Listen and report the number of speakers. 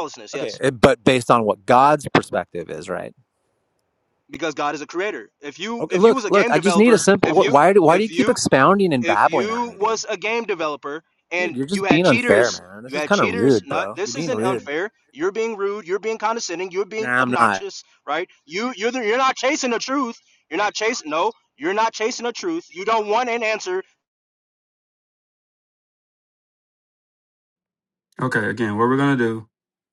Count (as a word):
three